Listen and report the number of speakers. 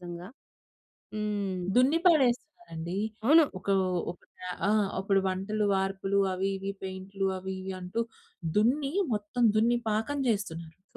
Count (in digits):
2